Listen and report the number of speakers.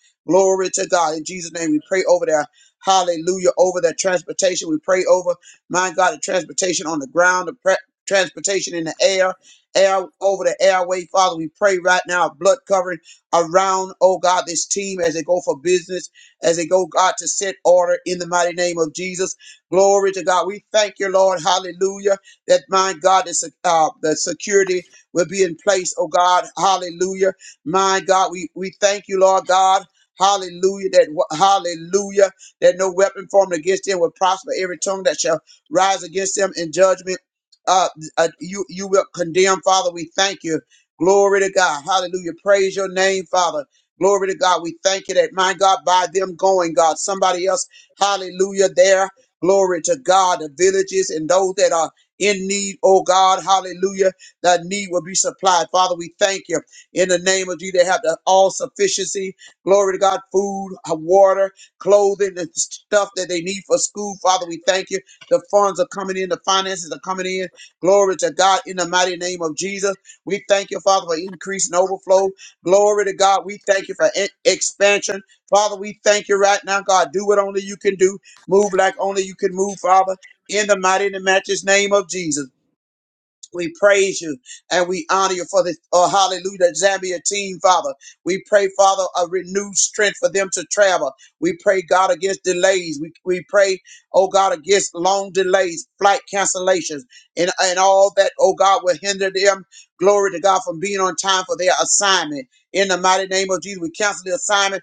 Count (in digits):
1